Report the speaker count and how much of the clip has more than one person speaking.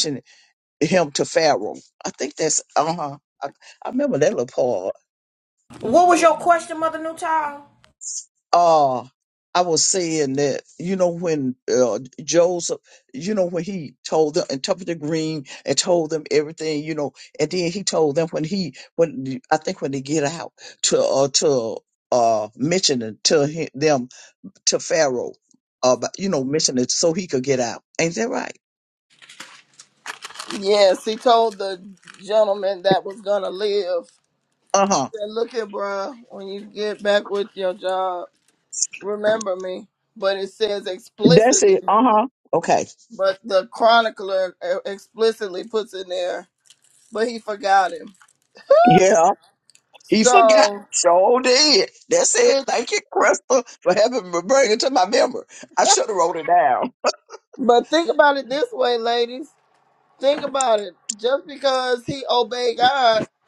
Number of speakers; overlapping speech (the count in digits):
3, about 2%